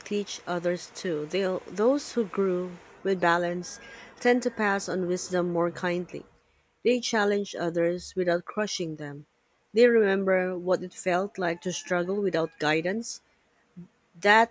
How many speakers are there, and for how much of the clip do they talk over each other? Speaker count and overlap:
1, no overlap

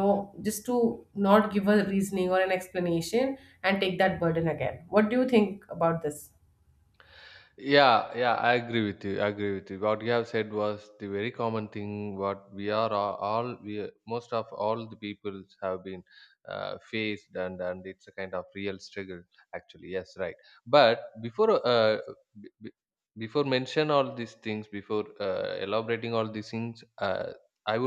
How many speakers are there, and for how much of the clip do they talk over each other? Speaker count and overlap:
2, no overlap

